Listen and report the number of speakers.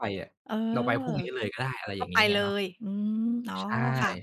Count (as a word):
two